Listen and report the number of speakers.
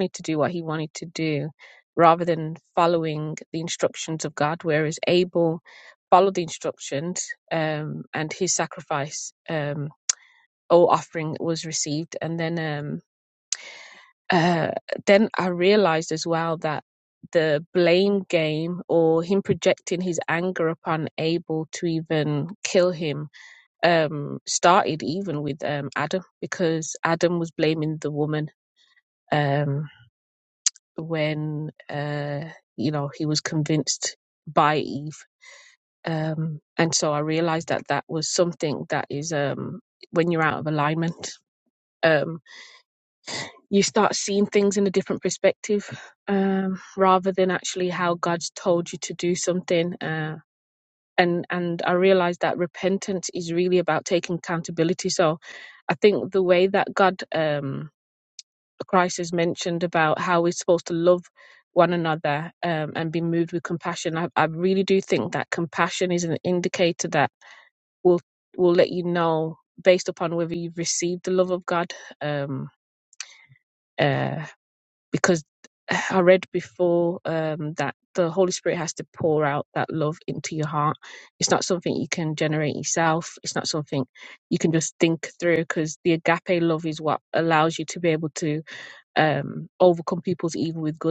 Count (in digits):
1